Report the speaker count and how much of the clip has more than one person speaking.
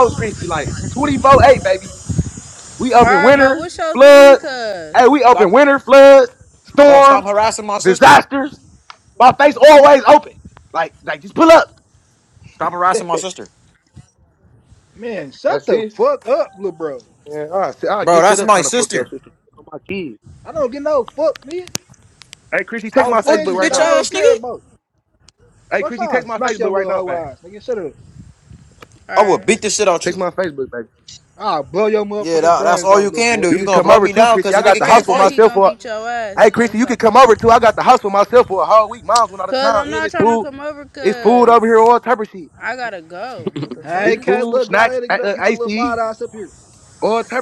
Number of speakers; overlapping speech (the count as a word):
four, about 32%